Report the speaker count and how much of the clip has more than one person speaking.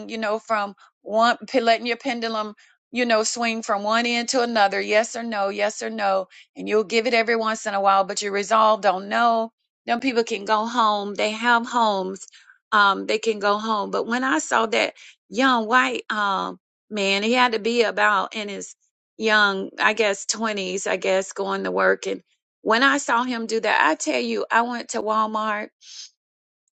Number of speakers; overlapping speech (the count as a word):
one, no overlap